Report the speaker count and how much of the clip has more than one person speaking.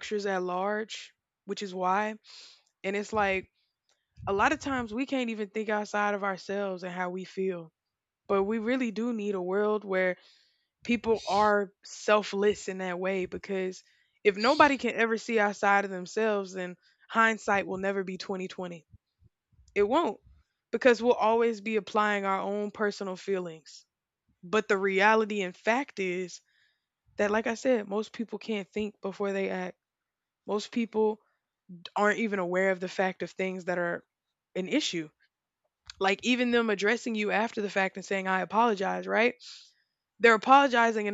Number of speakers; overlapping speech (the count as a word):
one, no overlap